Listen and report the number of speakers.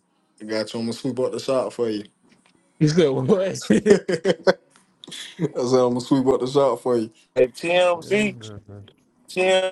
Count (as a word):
three